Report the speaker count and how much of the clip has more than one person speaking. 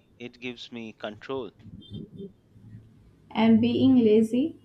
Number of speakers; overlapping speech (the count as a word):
two, no overlap